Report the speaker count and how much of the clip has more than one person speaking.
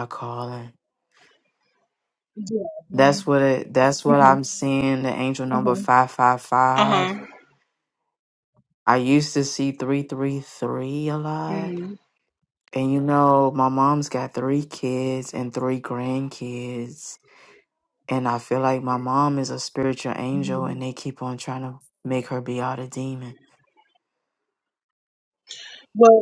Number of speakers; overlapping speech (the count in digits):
2, about 1%